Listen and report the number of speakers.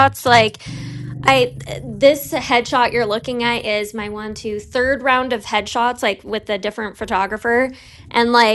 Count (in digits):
1